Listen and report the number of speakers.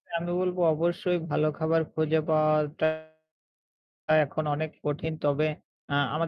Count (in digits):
1